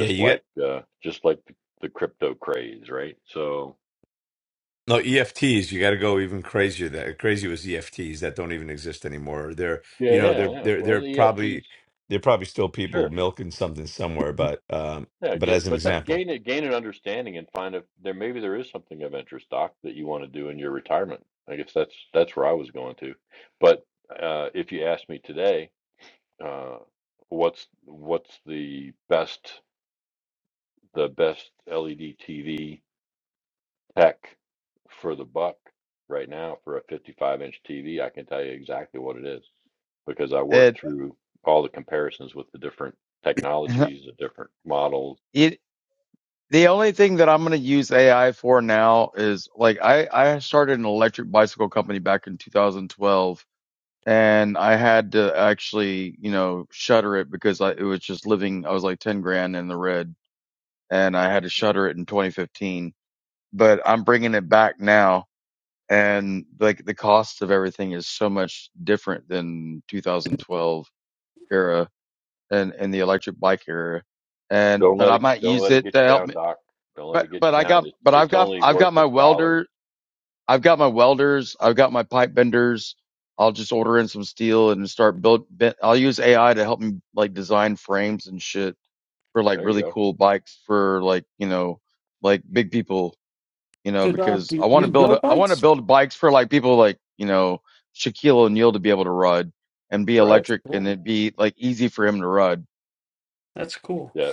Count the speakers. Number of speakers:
4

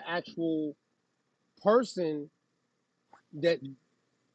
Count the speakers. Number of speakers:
1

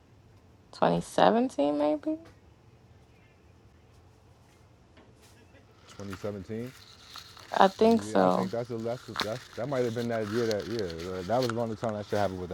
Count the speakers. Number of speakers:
2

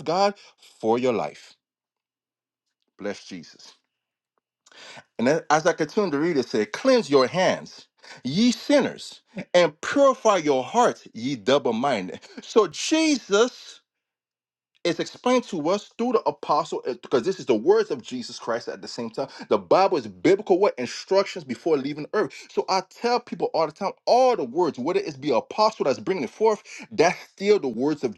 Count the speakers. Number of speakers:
1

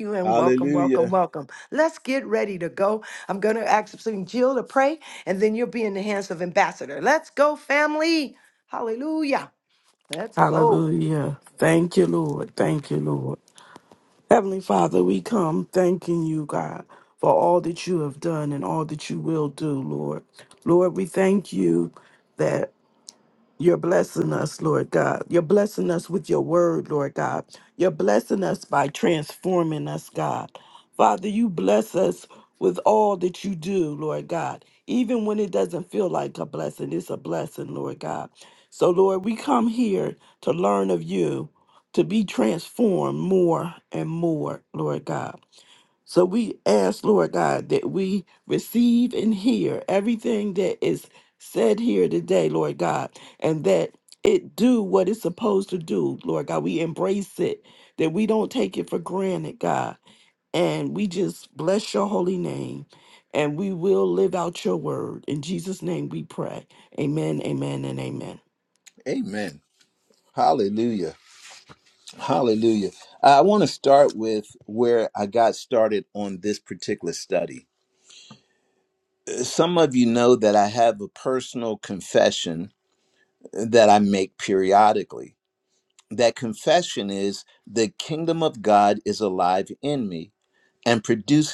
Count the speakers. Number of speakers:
3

